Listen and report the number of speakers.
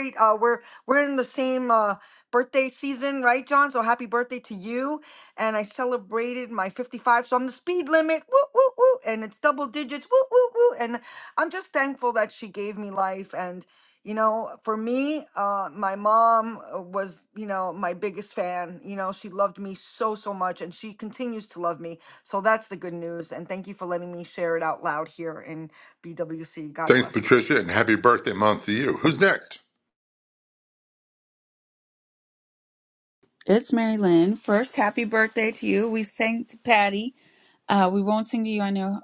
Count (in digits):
3